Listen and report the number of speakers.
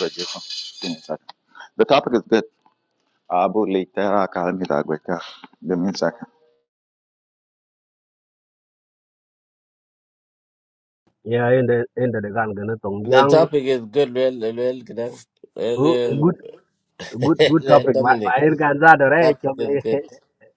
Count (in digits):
3